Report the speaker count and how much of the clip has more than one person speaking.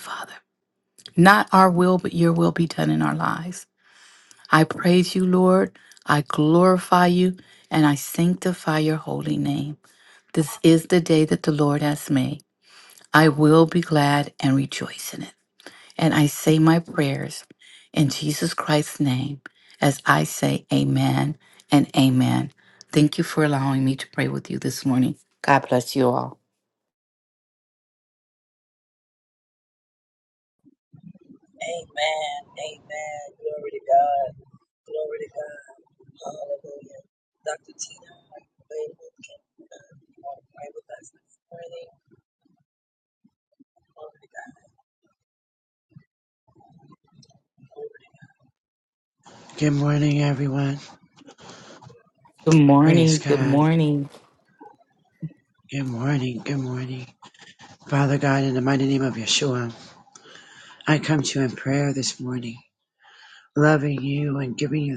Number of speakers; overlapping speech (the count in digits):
3, about 1%